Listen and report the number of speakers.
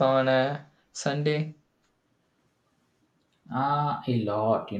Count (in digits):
2